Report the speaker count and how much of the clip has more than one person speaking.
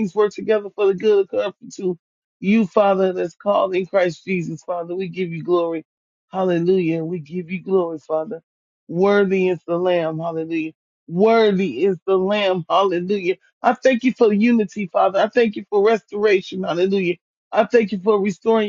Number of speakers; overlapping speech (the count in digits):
1, no overlap